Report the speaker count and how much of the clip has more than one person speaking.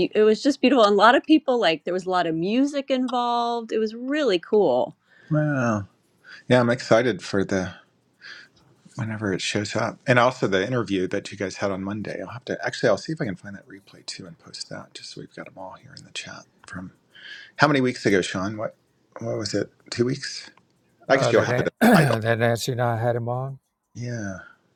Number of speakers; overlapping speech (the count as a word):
three, about 4%